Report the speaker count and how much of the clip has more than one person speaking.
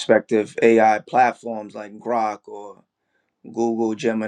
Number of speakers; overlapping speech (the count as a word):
one, no overlap